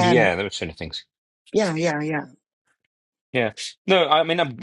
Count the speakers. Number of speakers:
two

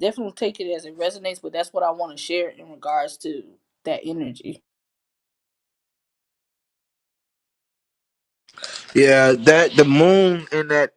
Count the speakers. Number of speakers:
two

